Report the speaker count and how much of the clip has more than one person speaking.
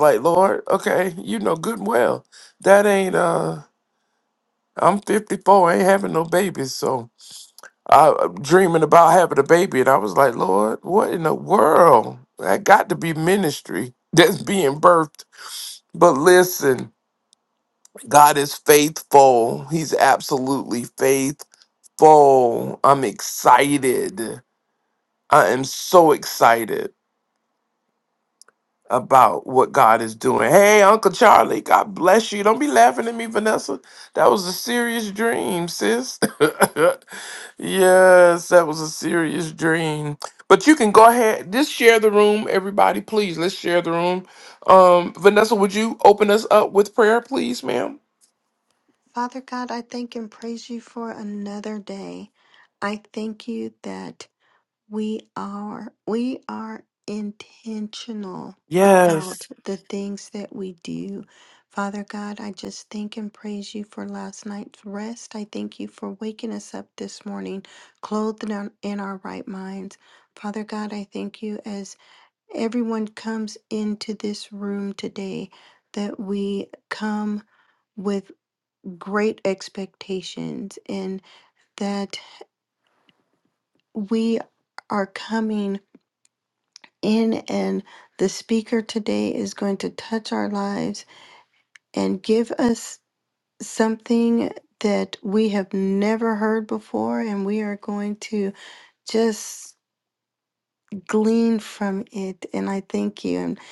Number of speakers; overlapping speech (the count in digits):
2, under 1%